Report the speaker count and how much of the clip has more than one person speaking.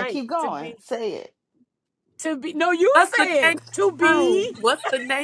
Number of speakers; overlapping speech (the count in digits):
3, about 37%